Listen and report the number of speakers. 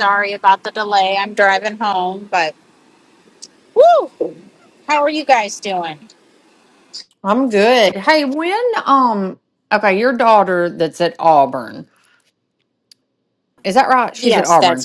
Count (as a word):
two